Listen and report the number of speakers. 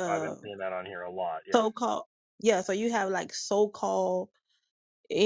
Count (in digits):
2